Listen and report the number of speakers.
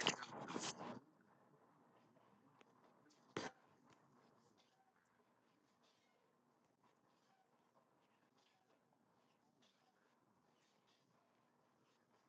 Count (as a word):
zero